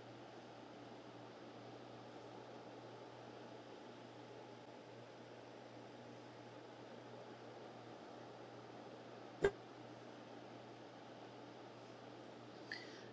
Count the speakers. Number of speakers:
zero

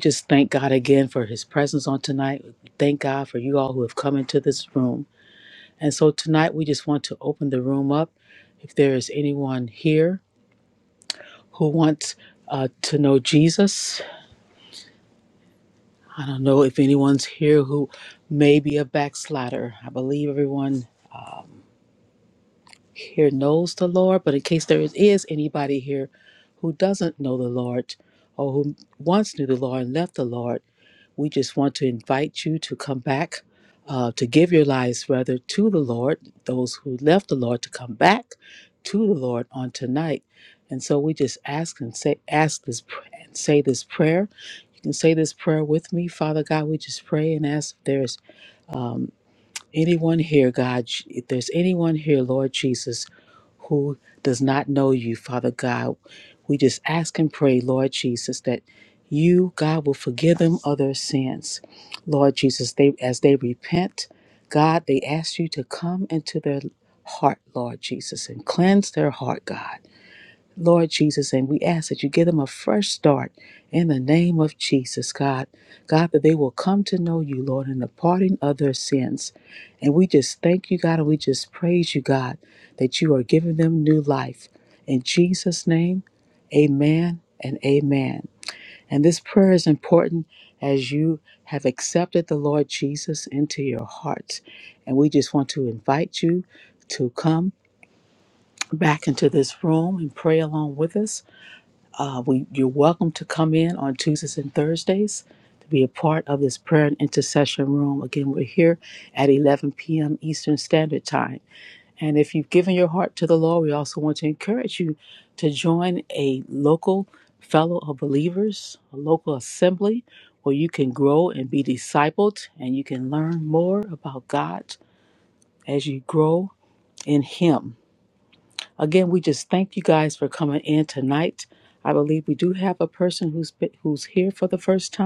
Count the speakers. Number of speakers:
one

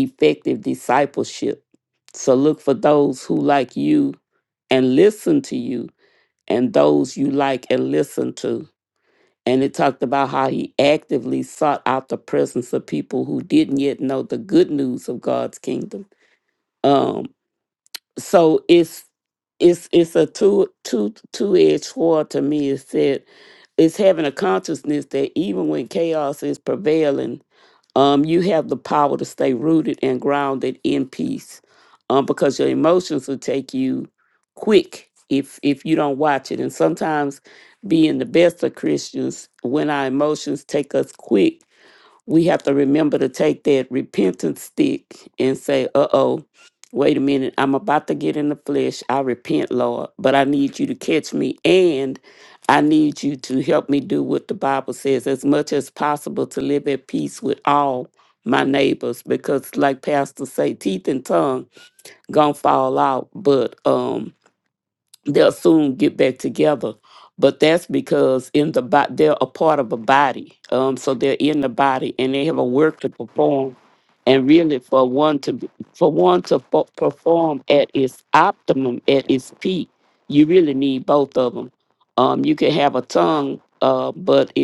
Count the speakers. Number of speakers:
one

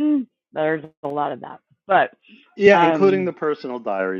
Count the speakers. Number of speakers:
two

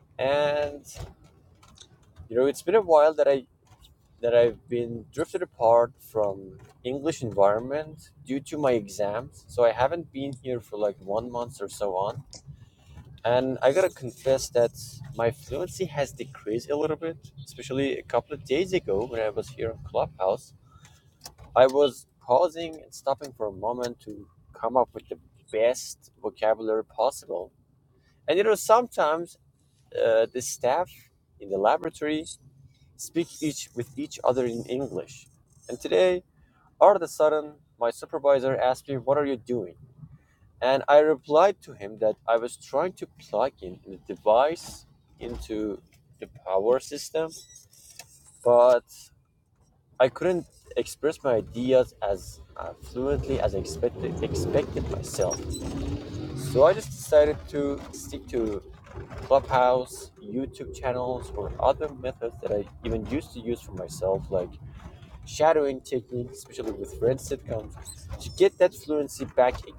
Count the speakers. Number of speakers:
one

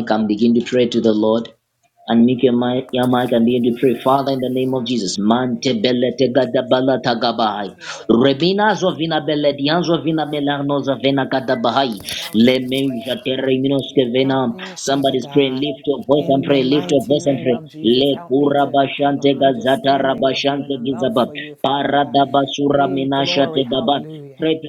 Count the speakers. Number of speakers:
two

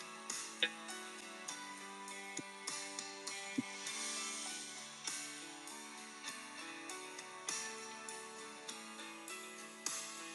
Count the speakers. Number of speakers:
zero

